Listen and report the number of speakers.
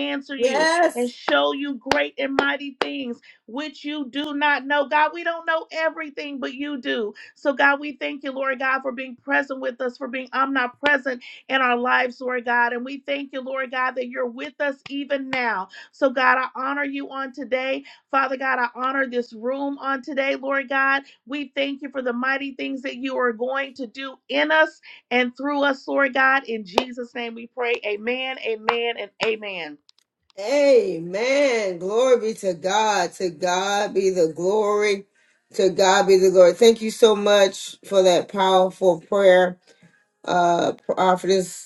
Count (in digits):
2